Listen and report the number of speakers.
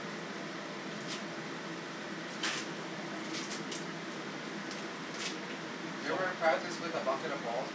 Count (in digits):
1